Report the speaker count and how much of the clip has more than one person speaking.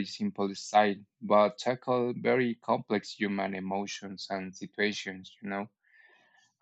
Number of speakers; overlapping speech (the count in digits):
1, no overlap